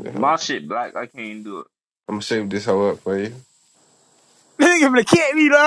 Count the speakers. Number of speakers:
3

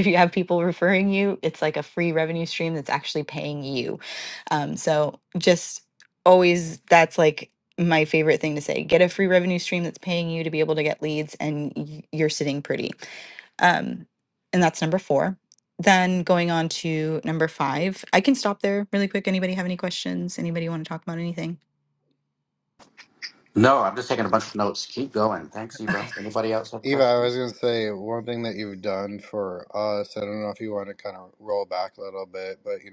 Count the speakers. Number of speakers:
3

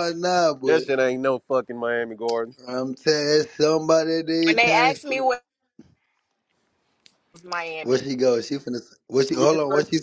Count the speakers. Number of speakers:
3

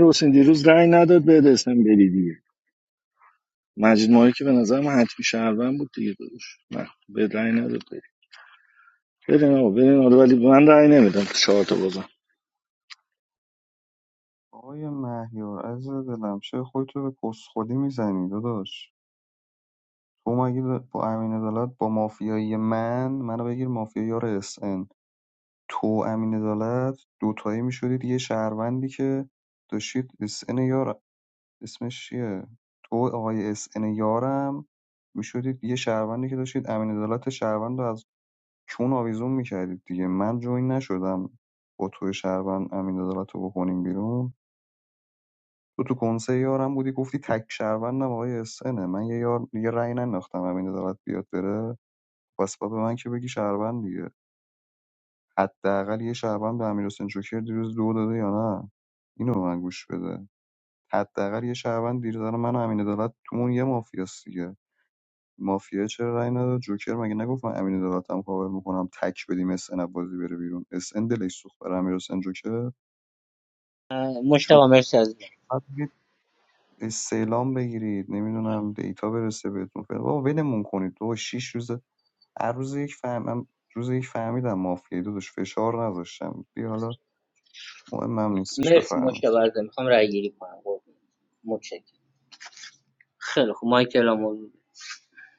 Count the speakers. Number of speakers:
3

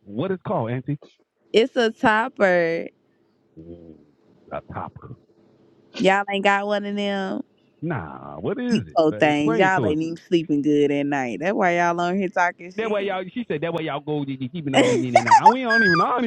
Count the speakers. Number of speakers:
2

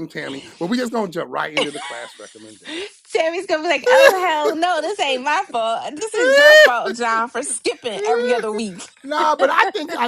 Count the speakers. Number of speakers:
2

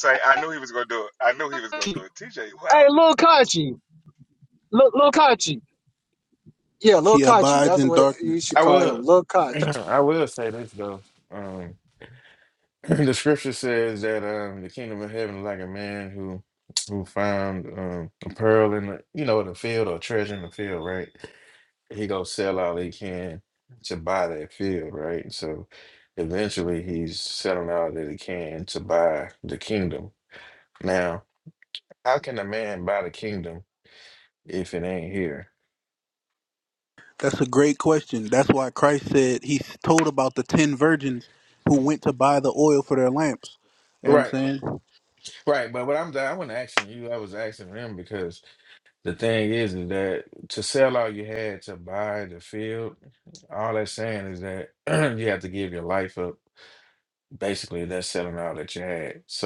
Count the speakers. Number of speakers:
4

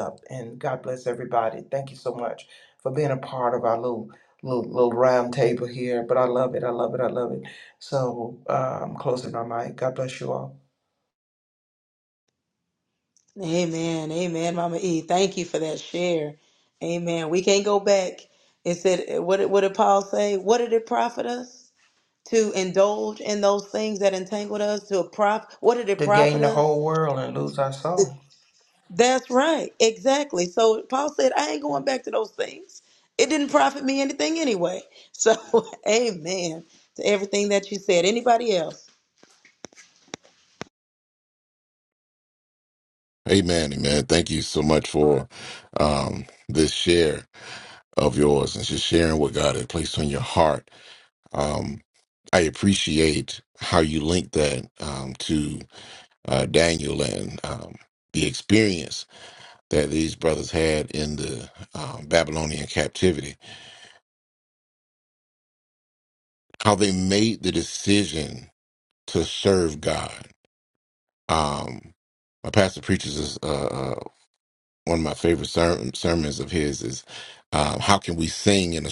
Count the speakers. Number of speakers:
3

